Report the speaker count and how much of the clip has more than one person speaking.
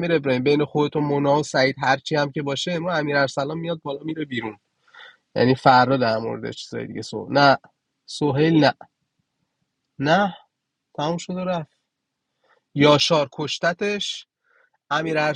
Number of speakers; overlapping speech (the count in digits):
1, no overlap